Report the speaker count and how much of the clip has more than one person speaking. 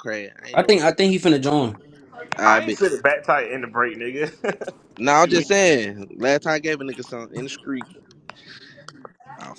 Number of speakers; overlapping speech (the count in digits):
3, about 9%